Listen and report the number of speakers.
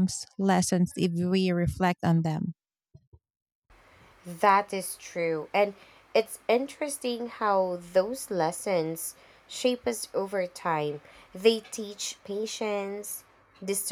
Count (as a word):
two